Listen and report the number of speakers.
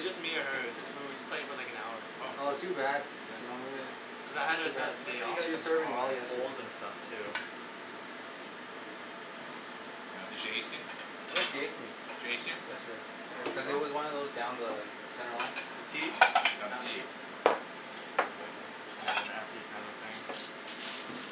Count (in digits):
4